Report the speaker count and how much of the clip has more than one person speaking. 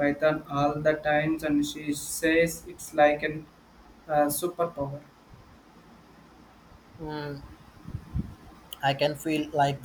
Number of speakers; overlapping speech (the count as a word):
two, no overlap